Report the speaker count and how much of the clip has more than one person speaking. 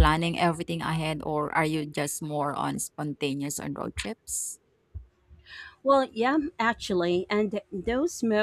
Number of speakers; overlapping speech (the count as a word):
two, no overlap